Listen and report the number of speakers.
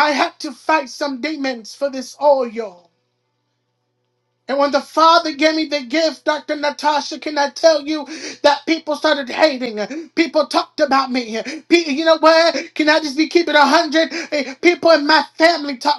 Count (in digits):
1